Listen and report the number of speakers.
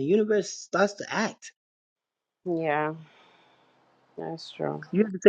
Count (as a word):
two